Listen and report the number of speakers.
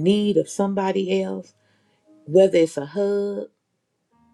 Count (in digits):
1